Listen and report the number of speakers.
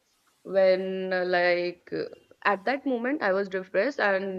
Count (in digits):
1